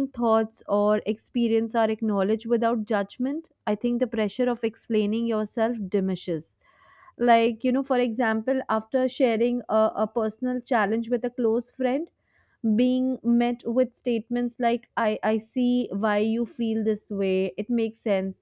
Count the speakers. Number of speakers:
one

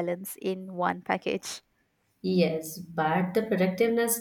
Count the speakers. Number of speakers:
two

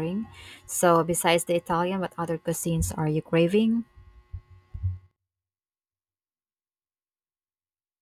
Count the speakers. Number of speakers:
one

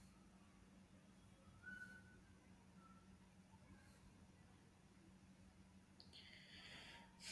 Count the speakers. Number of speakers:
zero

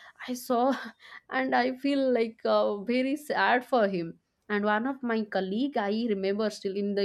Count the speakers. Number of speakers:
one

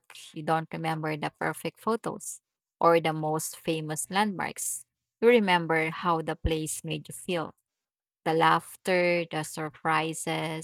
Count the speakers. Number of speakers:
one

